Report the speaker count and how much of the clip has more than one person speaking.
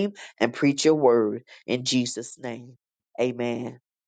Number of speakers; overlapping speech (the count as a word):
one, no overlap